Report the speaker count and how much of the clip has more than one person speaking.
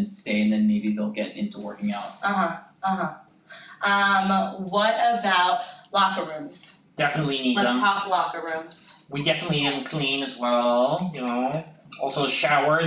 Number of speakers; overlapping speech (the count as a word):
three, about 2%